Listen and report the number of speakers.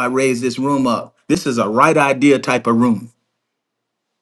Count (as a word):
one